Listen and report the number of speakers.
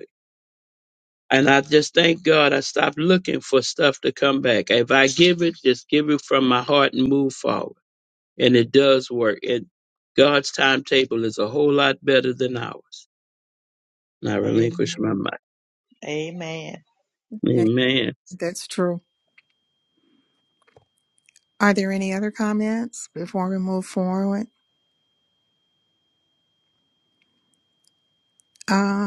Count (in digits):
3